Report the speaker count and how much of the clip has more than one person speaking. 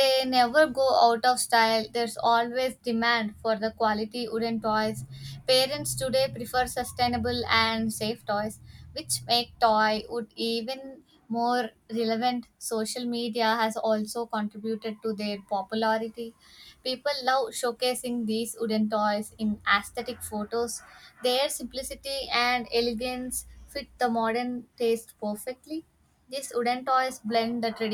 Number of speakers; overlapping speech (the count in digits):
1, no overlap